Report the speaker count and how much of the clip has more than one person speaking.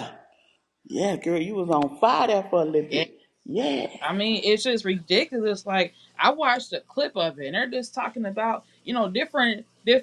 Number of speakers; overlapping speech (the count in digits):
2, about 1%